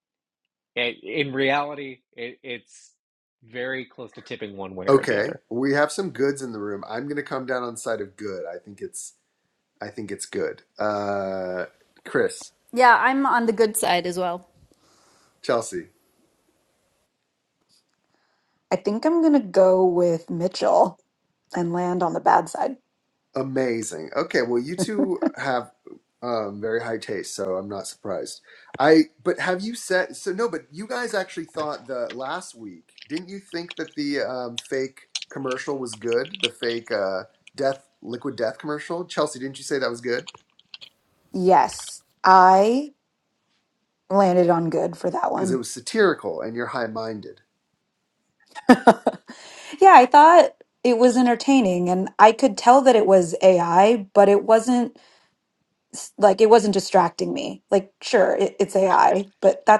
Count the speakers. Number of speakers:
four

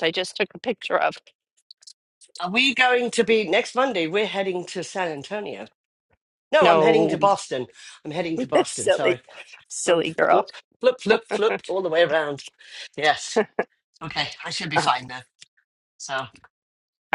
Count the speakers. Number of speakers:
two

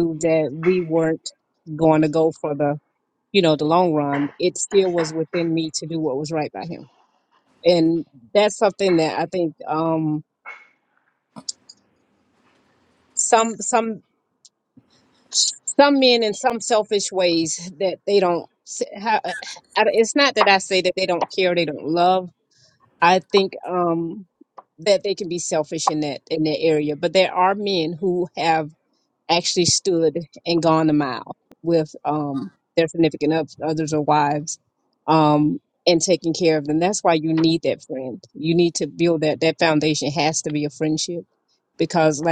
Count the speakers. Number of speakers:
one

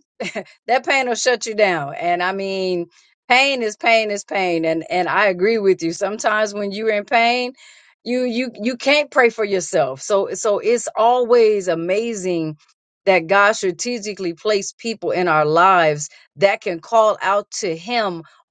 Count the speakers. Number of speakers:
one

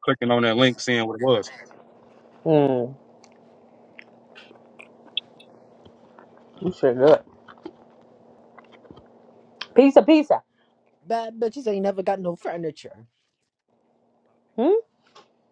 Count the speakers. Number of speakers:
three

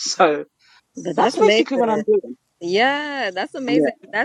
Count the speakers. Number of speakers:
two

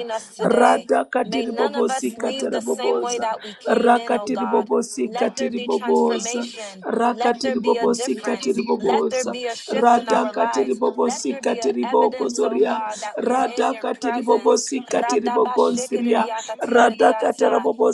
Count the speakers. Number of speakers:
two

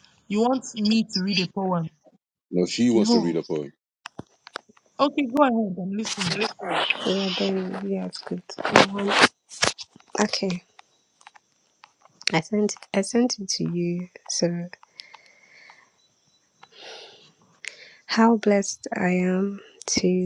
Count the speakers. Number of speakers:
three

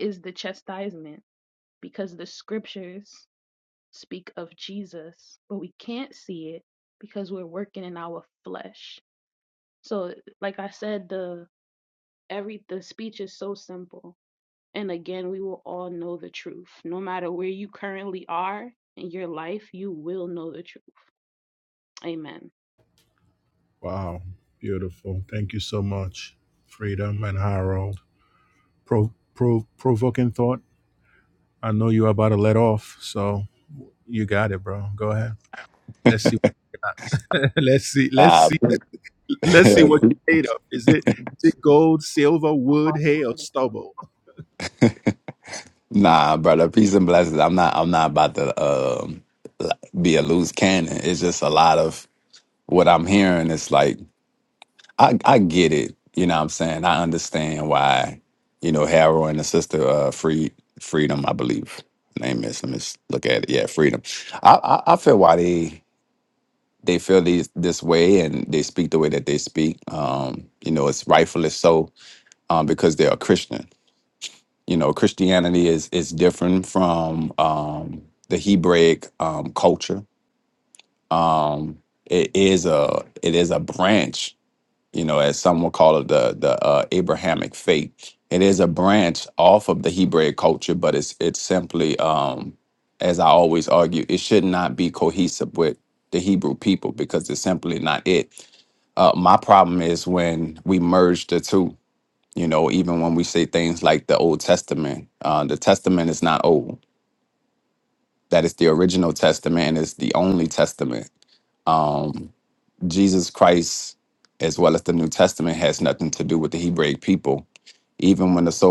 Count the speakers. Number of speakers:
three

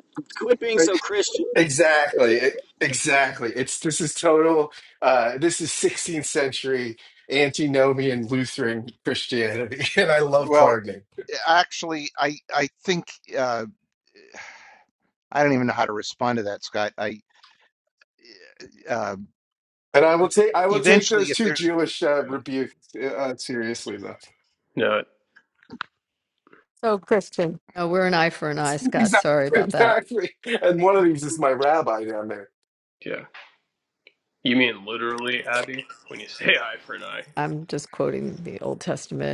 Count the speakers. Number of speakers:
five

